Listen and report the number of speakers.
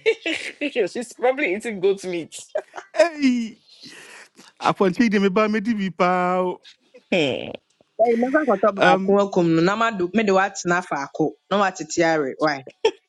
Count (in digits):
3